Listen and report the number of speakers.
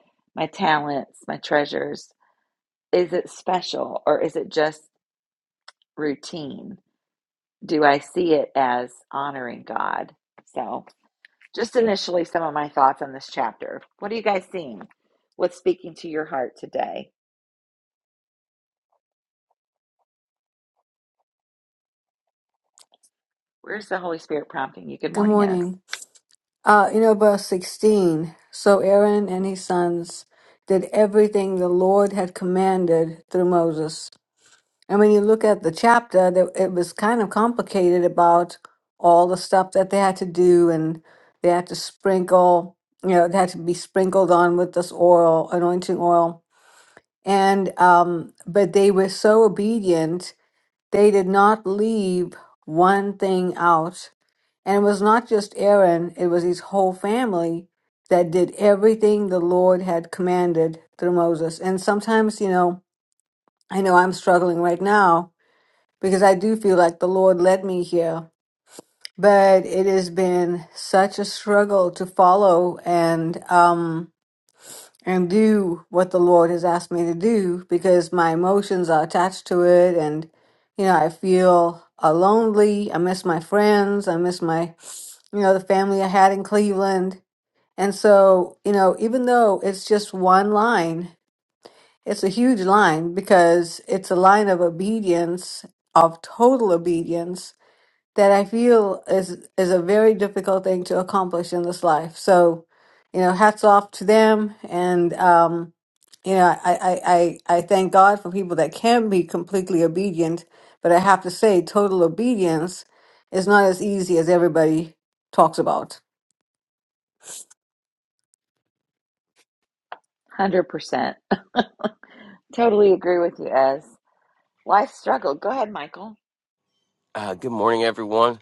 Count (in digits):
3